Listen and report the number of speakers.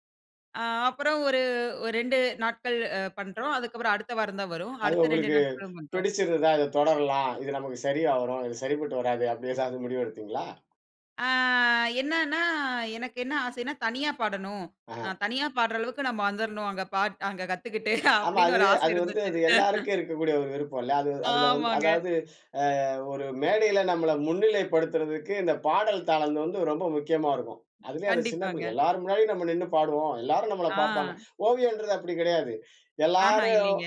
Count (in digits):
2